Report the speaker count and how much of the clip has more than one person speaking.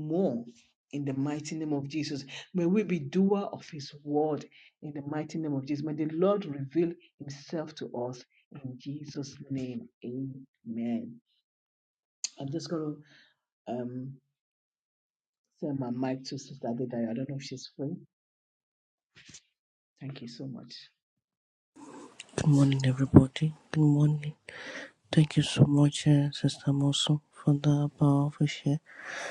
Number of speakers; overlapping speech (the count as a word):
two, no overlap